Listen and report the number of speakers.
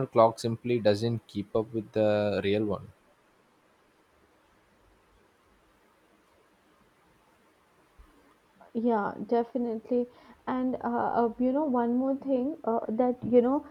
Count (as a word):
two